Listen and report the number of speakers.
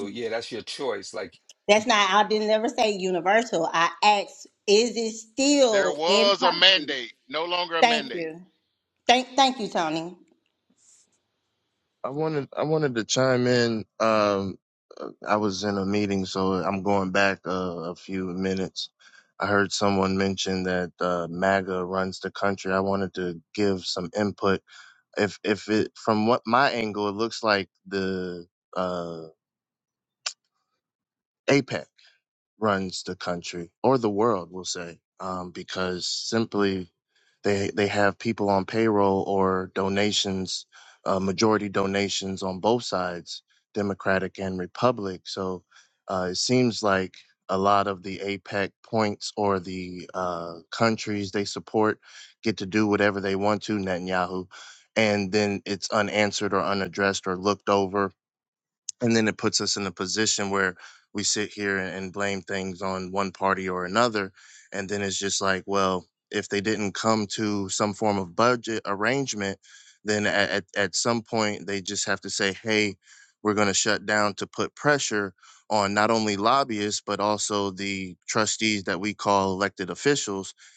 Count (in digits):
4